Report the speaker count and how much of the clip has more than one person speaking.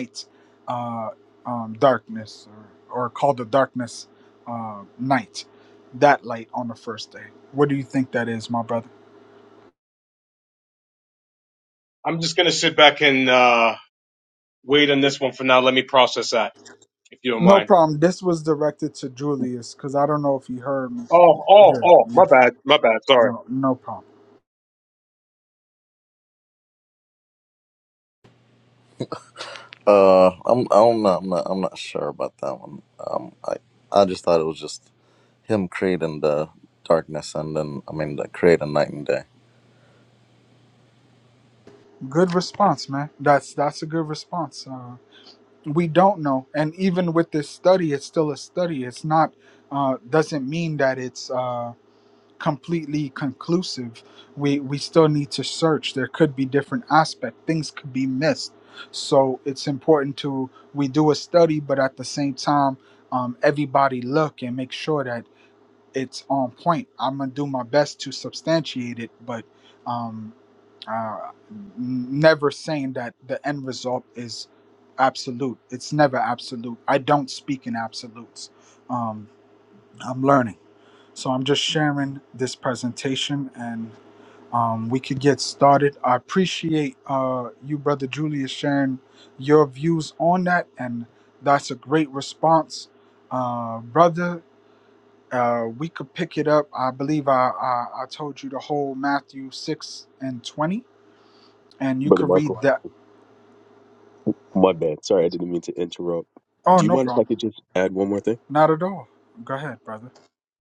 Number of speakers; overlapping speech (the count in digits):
4, about 2%